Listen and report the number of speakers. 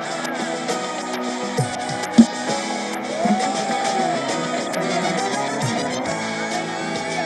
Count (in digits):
0